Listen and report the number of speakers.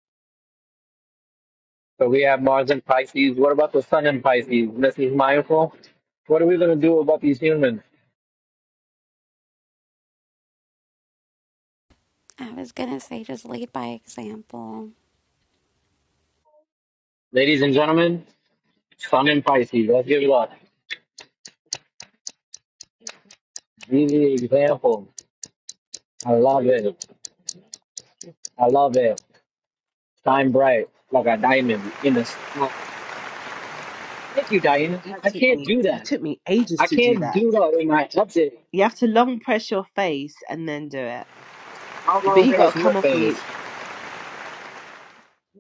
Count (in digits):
3